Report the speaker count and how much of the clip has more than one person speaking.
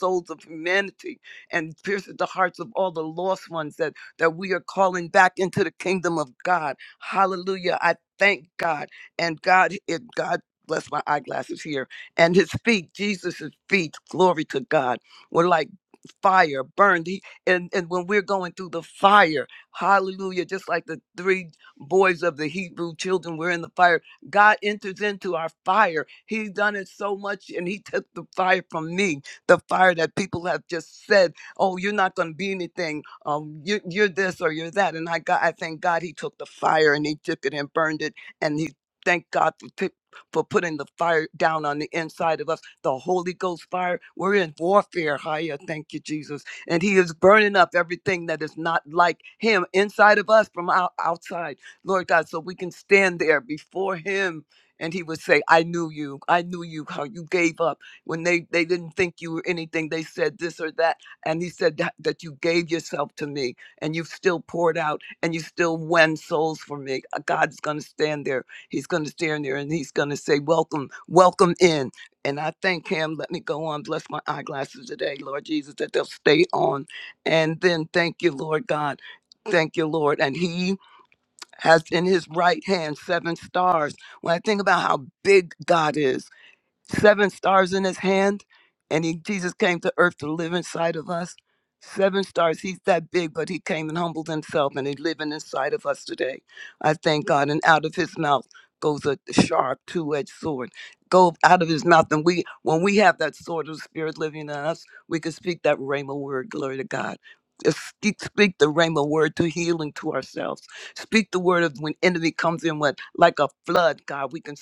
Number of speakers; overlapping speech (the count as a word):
one, no overlap